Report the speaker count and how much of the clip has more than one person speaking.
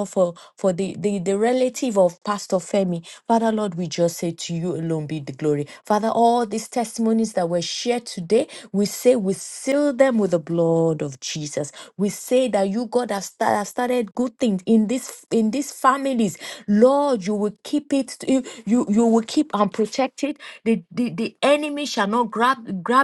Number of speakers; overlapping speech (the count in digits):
1, no overlap